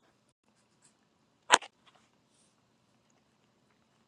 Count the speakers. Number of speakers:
0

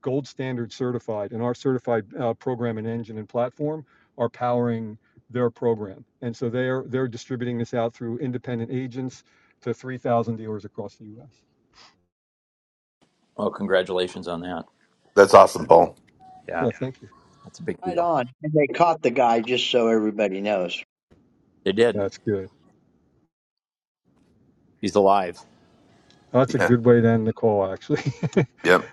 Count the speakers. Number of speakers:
4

